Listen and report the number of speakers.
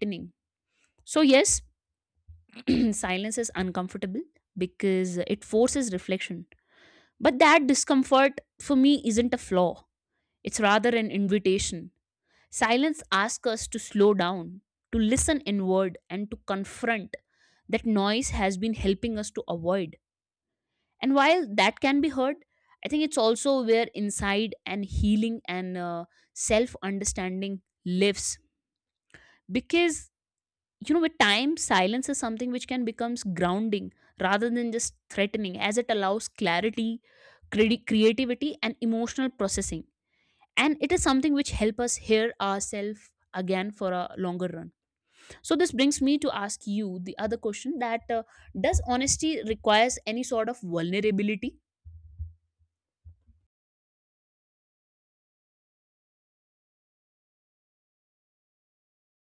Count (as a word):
one